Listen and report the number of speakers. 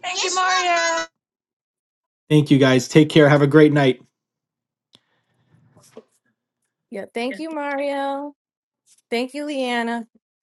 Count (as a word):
three